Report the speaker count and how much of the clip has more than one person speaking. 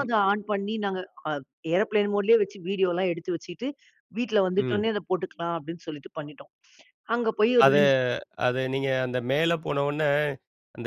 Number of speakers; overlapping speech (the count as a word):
two, about 5%